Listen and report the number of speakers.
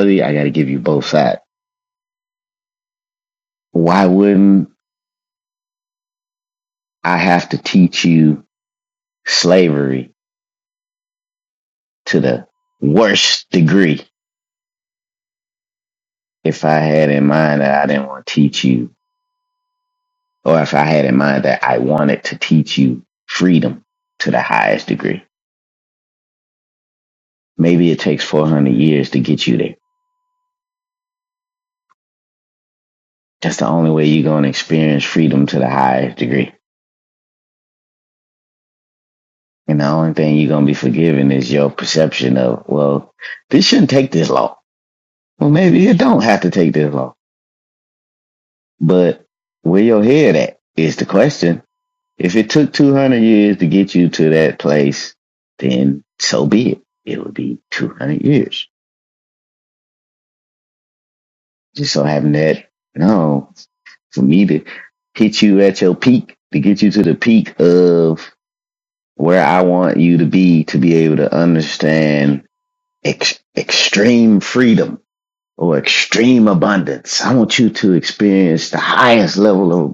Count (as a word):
one